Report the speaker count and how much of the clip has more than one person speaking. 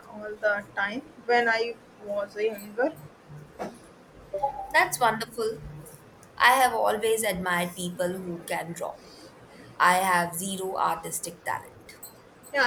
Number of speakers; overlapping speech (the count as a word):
two, no overlap